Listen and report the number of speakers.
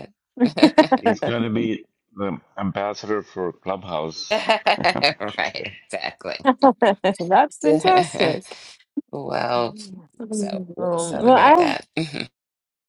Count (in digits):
3